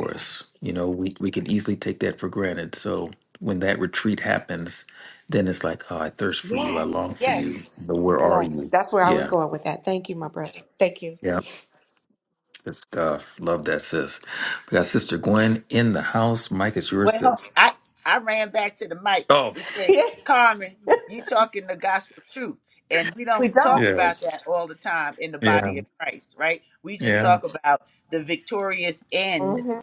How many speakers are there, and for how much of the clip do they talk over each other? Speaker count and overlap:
3, about 14%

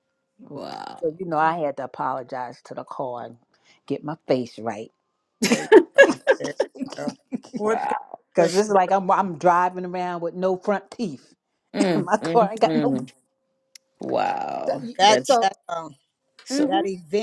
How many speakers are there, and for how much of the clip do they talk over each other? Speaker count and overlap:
3, about 15%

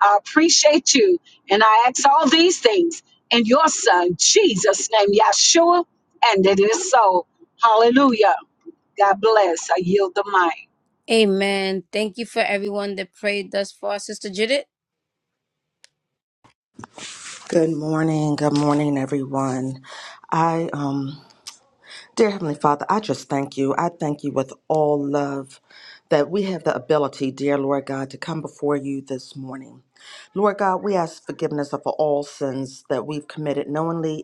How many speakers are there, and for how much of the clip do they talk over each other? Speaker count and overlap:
3, no overlap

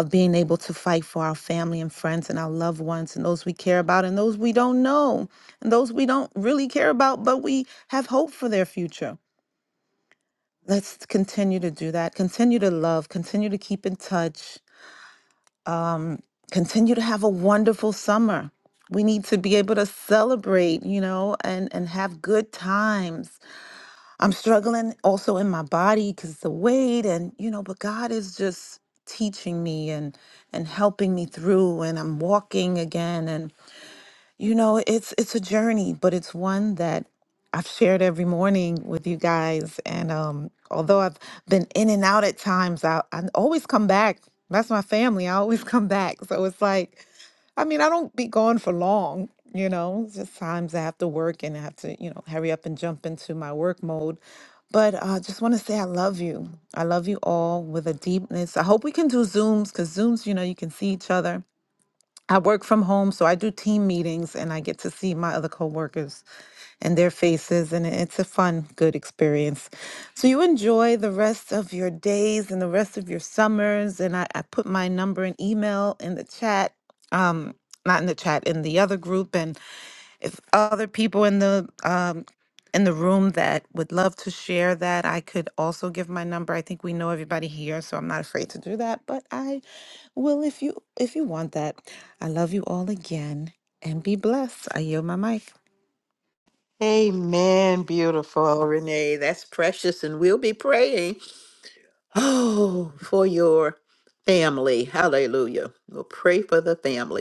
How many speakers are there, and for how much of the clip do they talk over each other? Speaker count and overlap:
2, no overlap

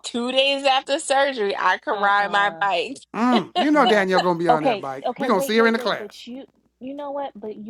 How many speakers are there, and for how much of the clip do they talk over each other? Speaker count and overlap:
3, about 36%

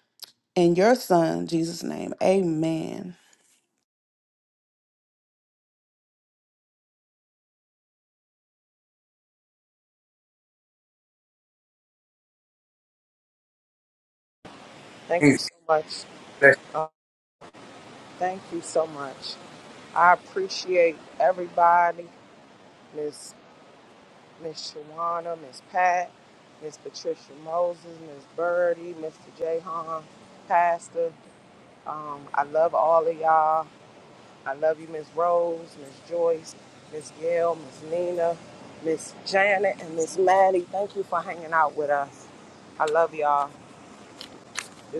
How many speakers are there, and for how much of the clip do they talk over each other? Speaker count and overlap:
2, no overlap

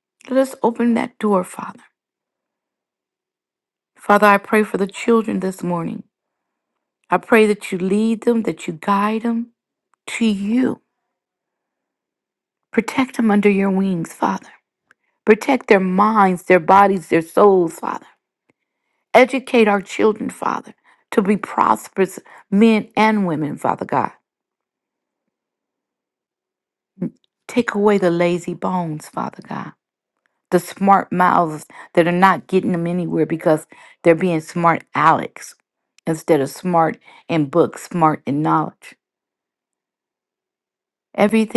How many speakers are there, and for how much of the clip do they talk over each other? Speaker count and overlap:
1, no overlap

